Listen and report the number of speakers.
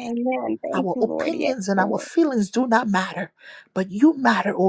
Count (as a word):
two